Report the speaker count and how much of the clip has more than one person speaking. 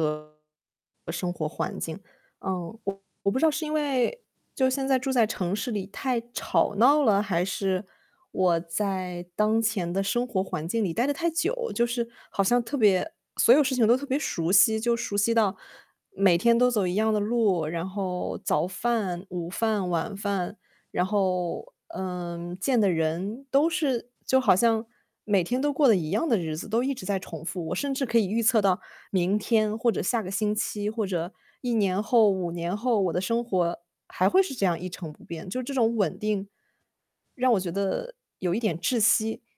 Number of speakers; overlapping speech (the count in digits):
1, no overlap